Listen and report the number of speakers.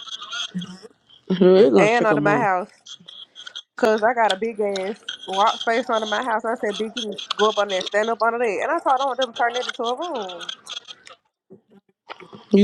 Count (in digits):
2